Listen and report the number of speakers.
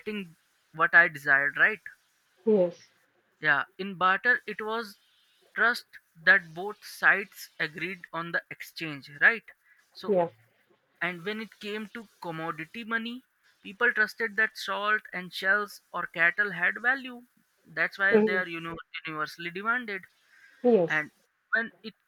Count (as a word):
two